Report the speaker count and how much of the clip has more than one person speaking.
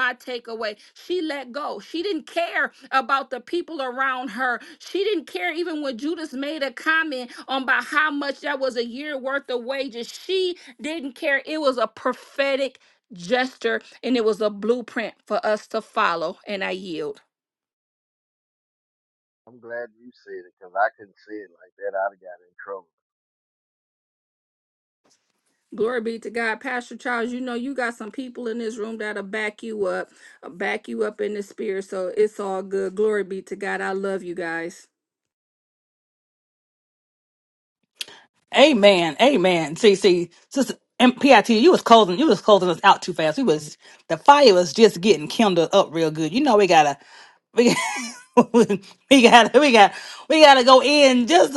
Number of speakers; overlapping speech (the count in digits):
3, no overlap